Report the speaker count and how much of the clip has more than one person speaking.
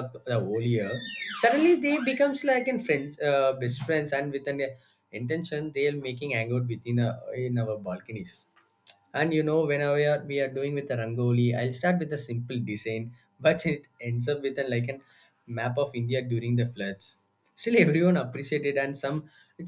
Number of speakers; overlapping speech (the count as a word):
one, no overlap